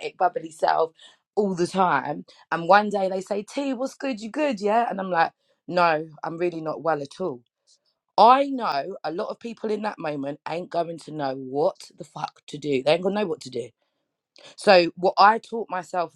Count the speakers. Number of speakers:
1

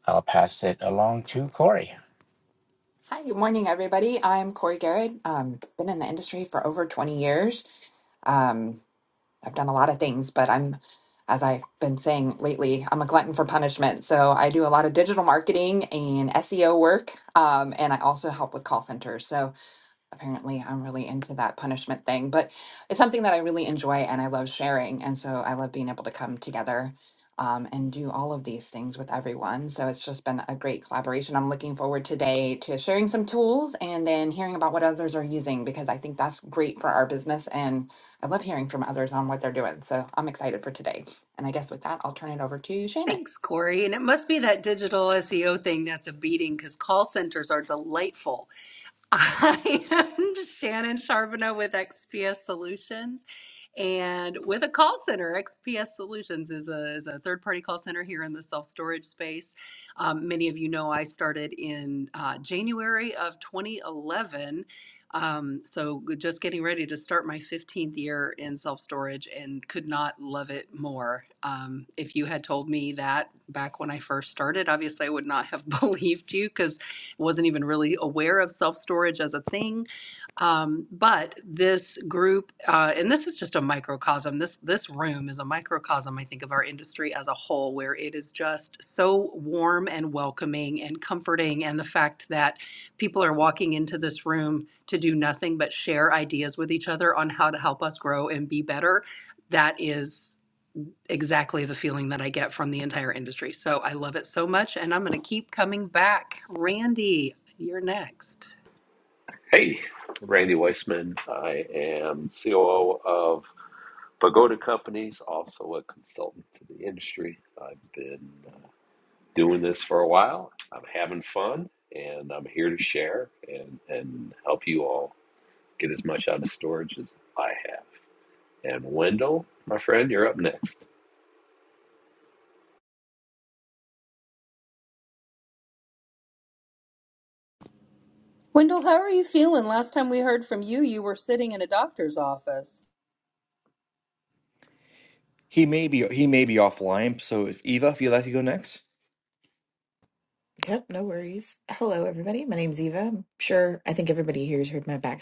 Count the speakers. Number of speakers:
6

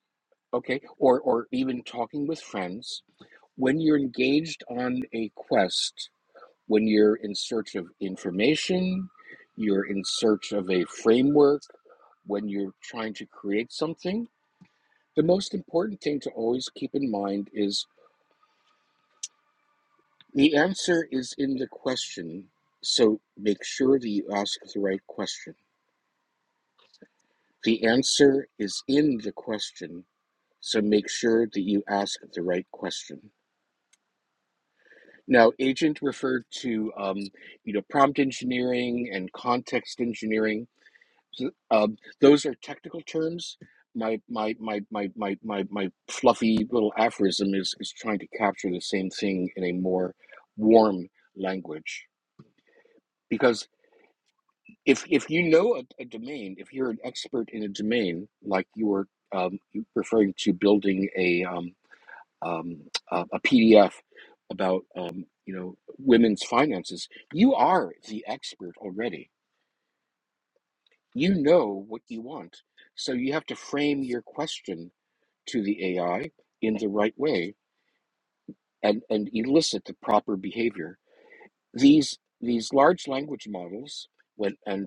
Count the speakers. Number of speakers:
1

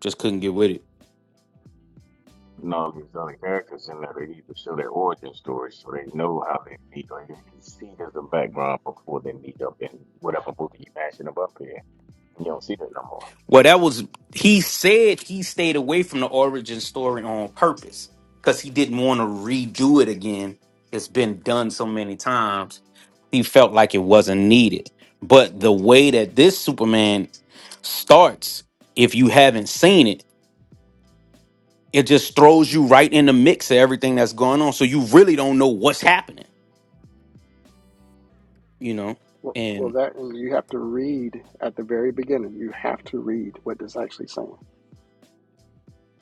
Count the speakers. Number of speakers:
3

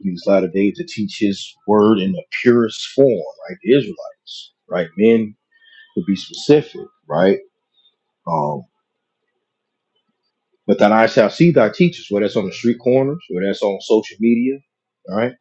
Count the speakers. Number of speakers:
1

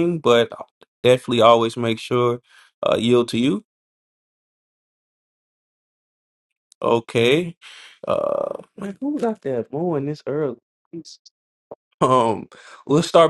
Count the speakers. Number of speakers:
1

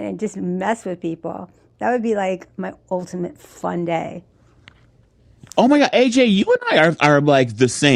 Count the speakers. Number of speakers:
2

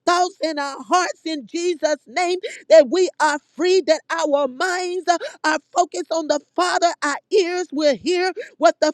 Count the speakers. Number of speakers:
1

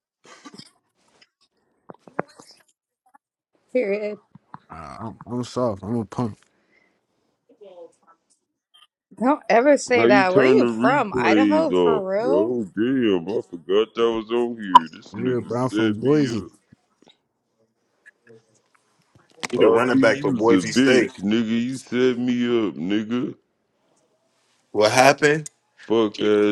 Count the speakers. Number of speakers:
4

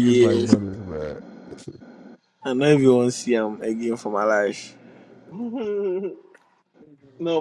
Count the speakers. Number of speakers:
3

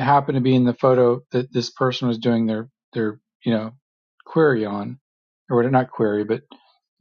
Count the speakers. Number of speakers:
1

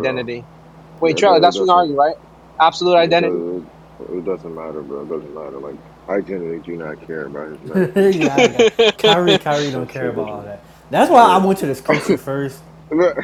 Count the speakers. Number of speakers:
3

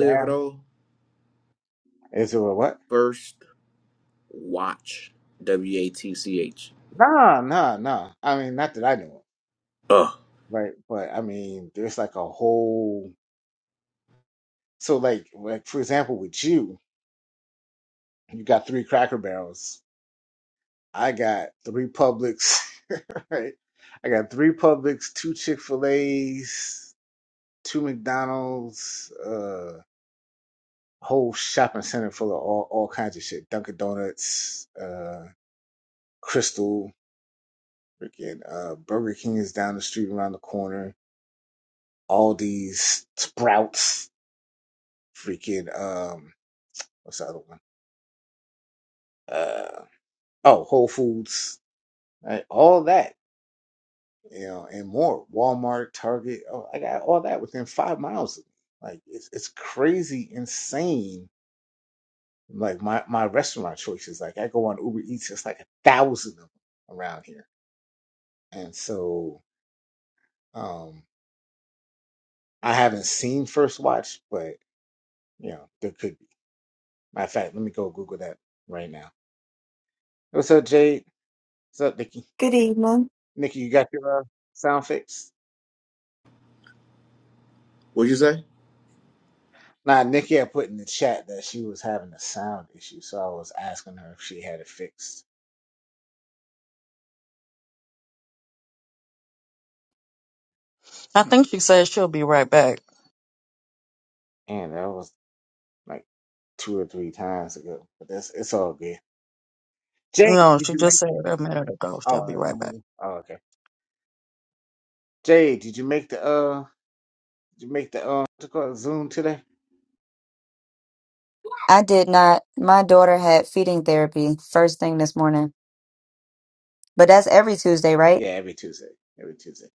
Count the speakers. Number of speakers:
4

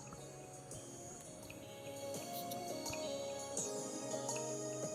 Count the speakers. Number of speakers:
0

